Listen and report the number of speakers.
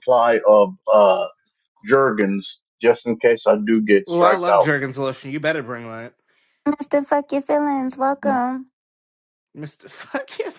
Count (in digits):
3